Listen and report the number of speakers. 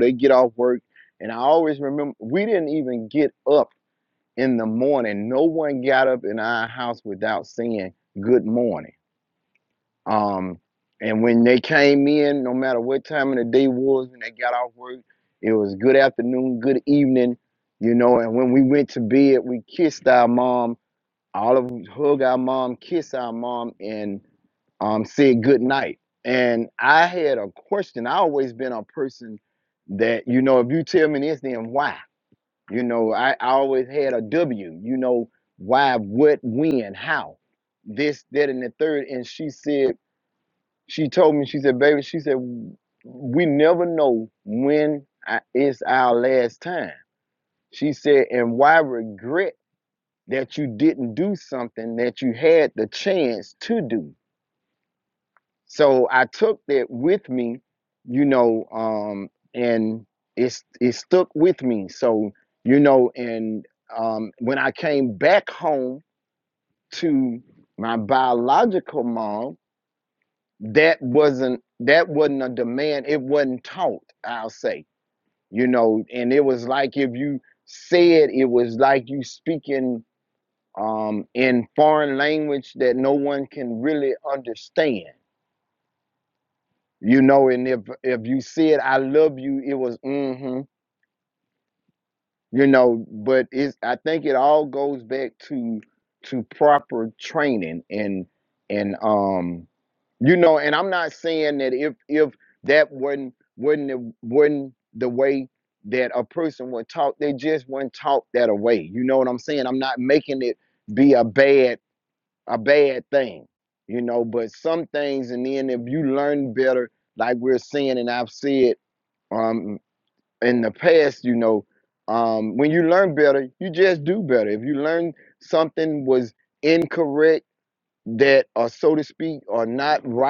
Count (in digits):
1